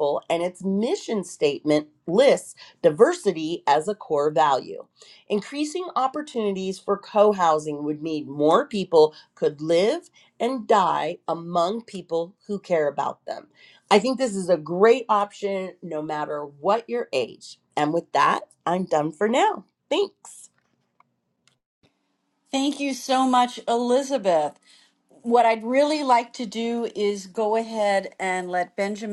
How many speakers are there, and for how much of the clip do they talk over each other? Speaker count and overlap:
two, no overlap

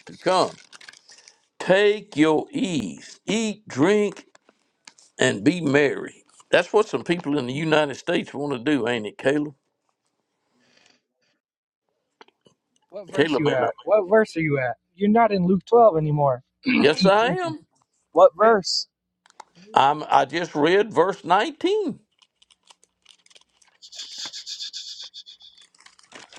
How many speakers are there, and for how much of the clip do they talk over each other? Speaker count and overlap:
two, about 4%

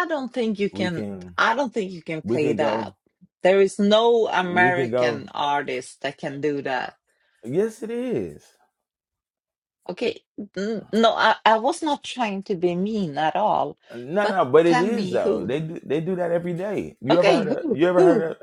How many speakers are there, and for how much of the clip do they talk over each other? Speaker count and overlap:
two, about 21%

